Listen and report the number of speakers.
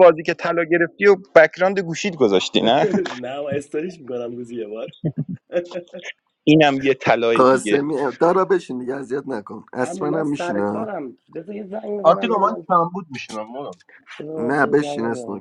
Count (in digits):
4